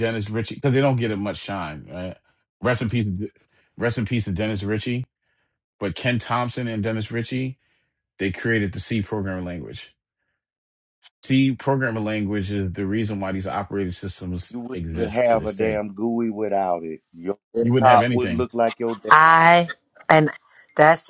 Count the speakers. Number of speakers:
three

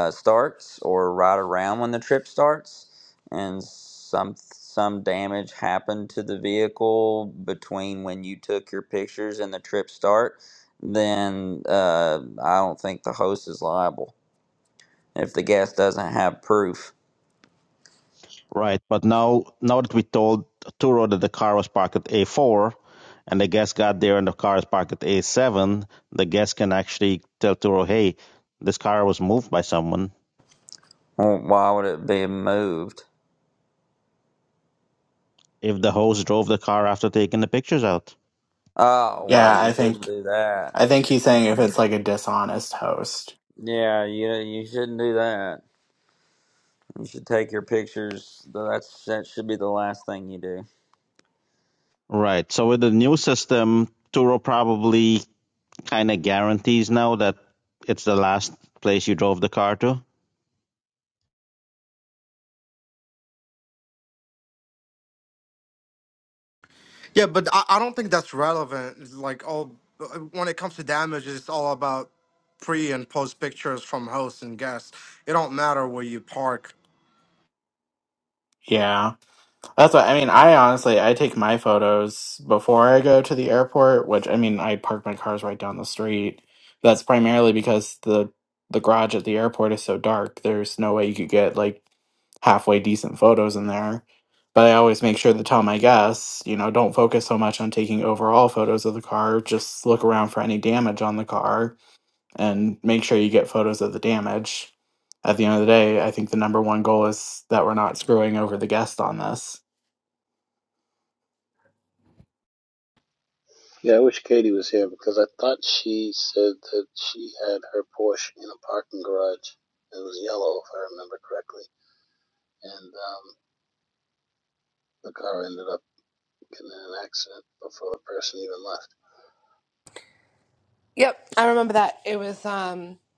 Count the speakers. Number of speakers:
six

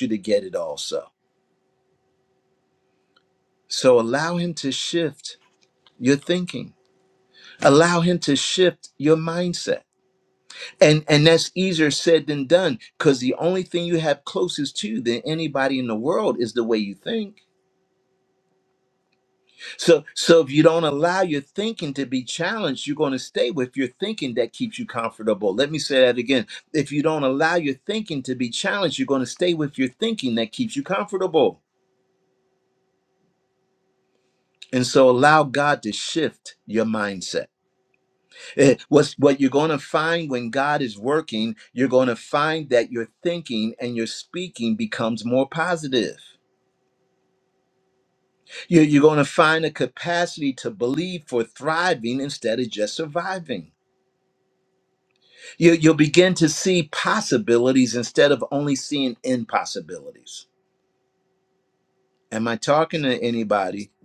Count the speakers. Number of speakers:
one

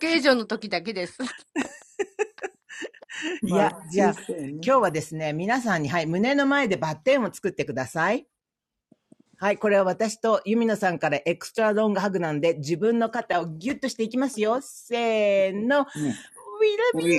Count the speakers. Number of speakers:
three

